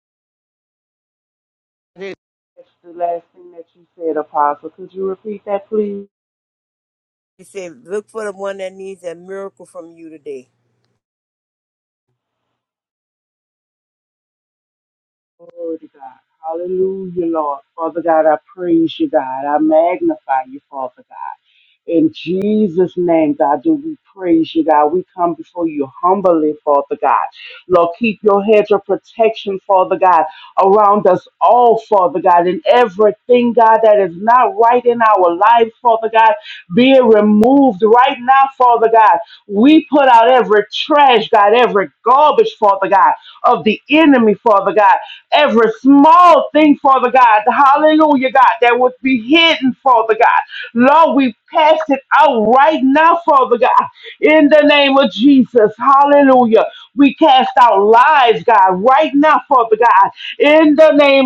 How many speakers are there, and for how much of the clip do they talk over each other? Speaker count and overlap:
two, no overlap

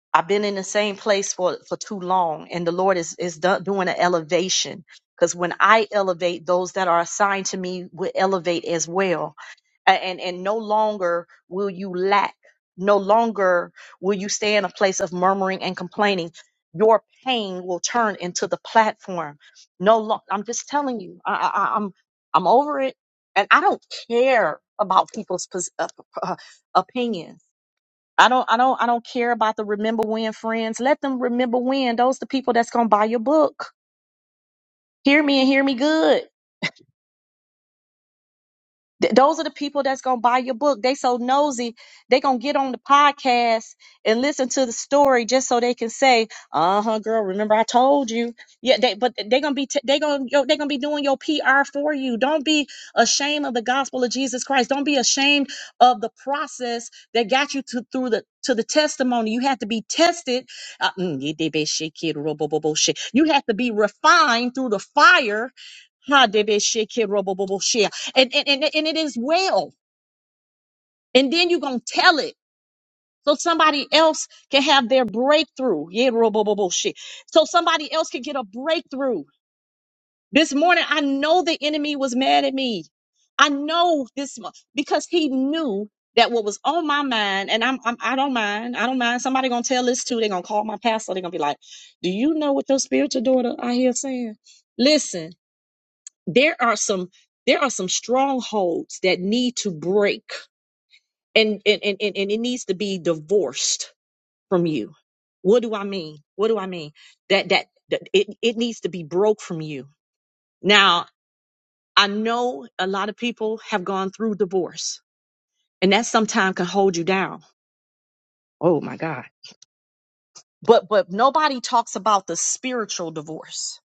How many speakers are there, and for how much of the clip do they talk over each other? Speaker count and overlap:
one, no overlap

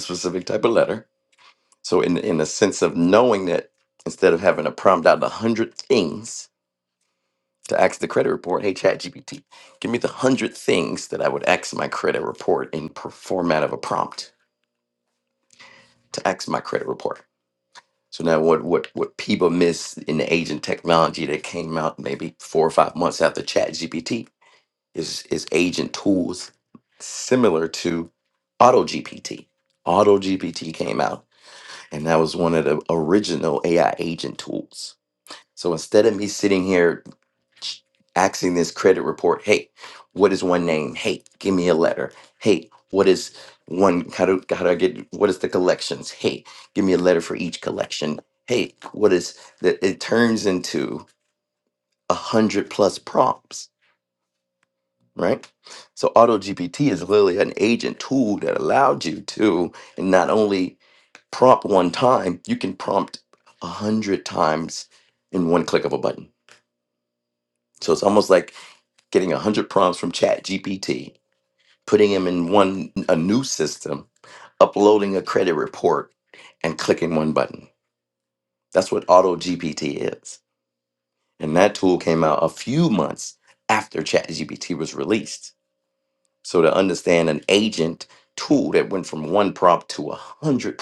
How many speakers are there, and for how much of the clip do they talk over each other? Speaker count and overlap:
one, no overlap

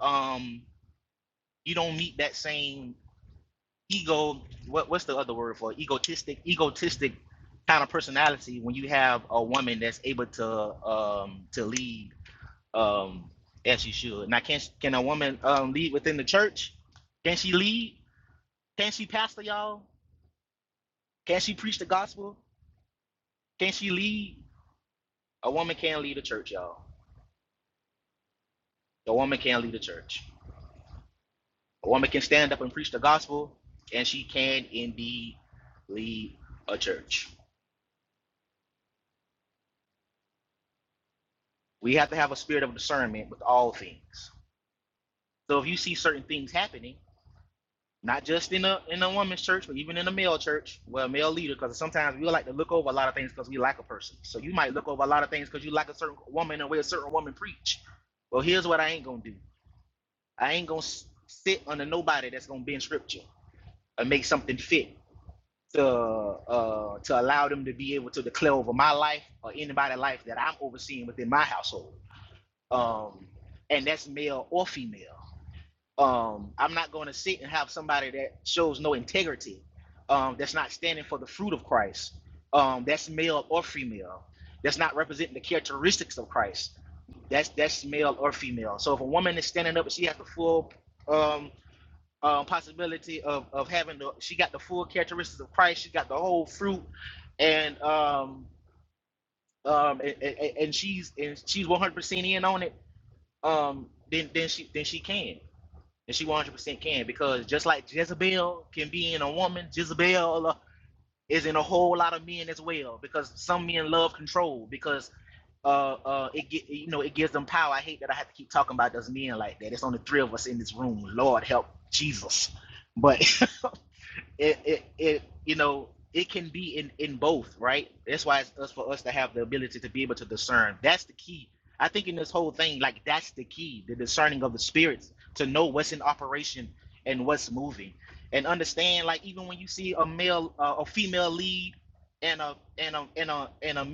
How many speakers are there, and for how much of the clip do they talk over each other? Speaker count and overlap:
one, no overlap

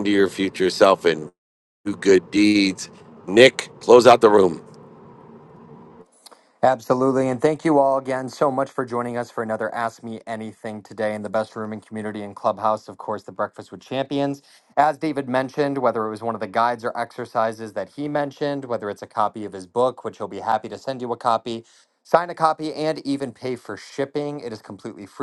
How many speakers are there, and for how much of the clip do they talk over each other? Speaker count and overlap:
two, no overlap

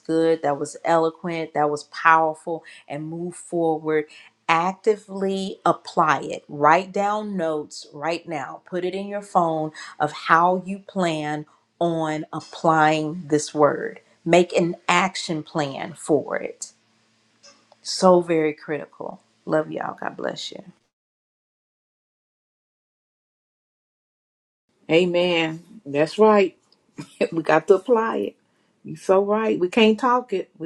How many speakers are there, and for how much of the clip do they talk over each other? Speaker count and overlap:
two, no overlap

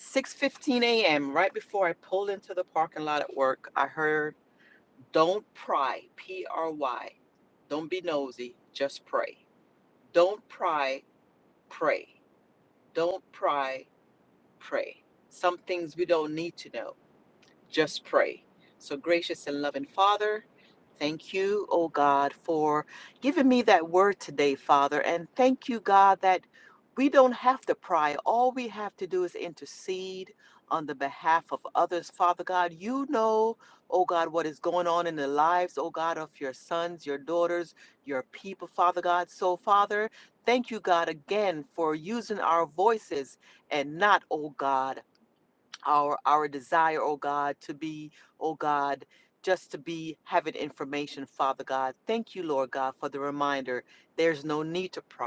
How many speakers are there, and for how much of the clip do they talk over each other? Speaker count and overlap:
one, no overlap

